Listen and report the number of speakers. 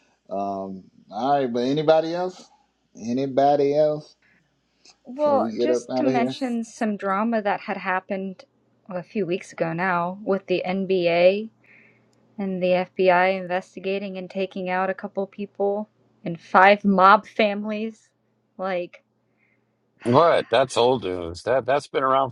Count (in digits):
3